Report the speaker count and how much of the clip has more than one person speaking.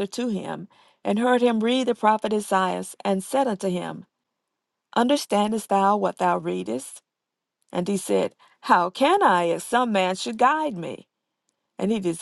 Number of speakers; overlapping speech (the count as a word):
one, no overlap